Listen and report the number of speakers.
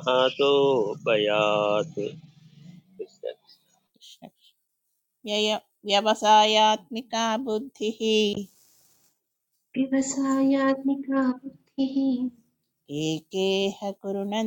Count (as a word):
three